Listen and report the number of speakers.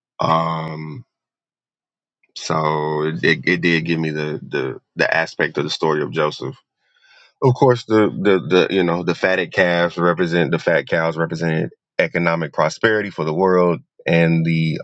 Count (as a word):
one